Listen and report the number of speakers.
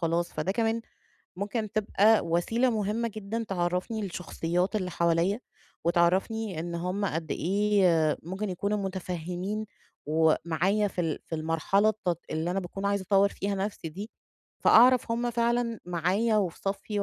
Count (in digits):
1